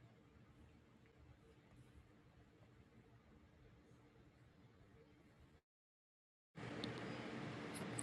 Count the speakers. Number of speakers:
0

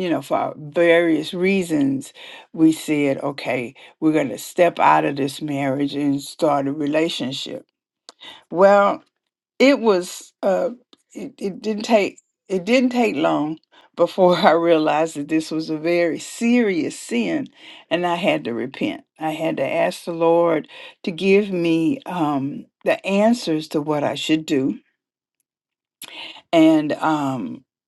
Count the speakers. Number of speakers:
1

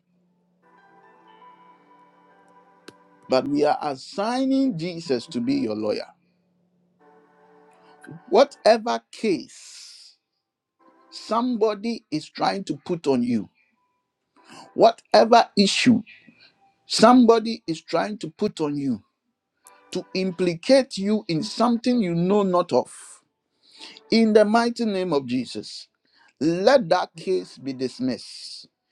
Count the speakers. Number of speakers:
1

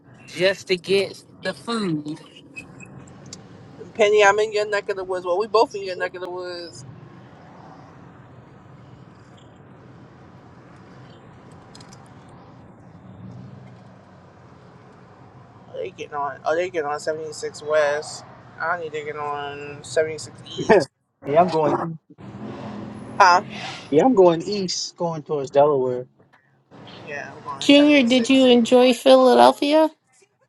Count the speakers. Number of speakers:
4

